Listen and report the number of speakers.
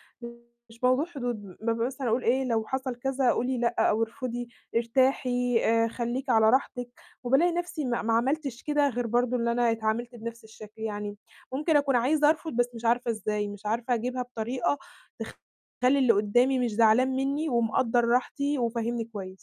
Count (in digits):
1